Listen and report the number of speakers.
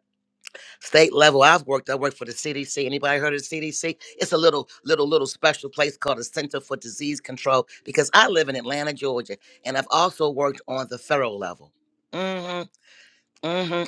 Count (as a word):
one